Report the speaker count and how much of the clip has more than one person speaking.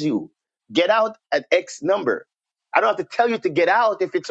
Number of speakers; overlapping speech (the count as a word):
one, no overlap